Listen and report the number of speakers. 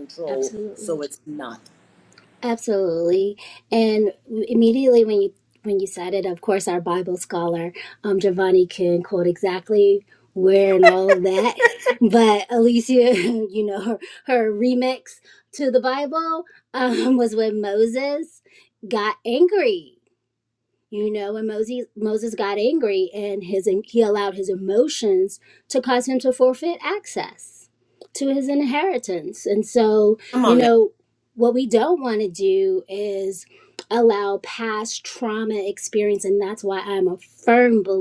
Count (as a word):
two